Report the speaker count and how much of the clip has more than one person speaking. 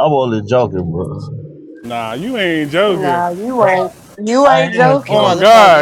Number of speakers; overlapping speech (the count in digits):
3, about 32%